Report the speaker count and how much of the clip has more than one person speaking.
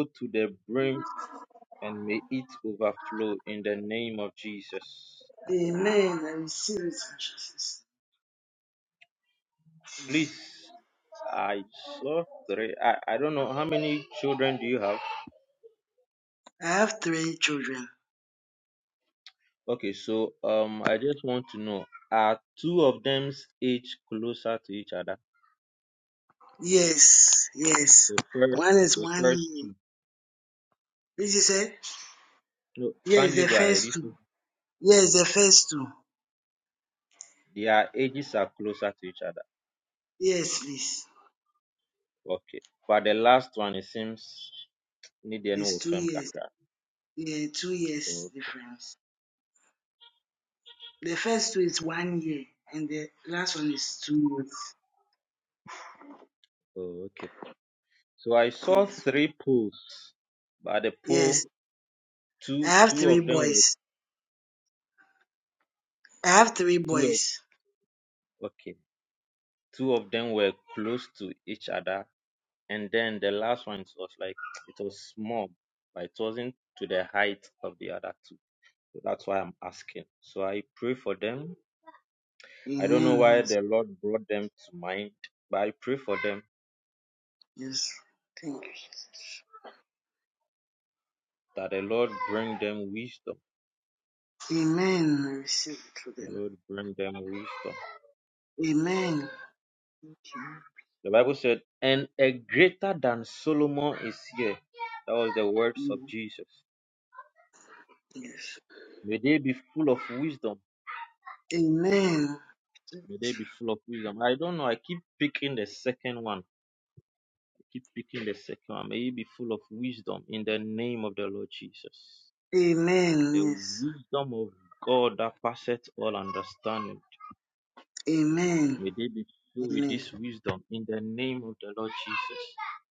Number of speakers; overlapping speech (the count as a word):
two, about 5%